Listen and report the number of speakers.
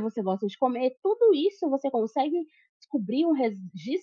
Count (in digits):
1